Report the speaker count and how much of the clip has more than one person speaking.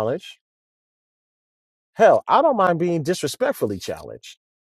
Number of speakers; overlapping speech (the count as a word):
one, no overlap